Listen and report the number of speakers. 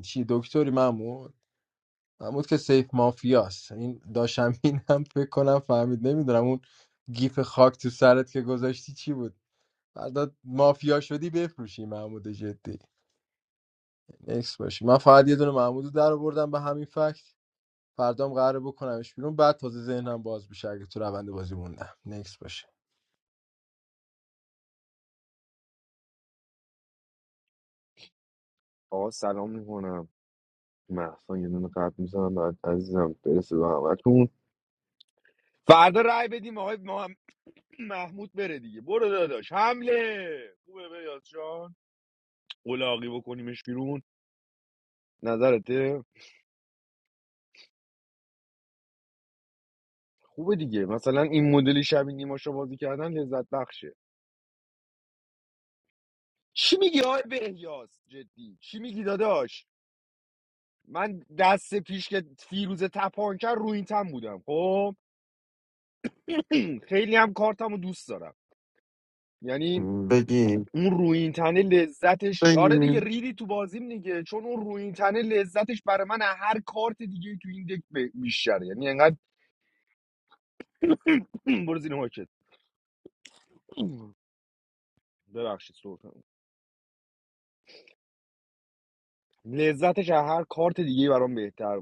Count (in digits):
3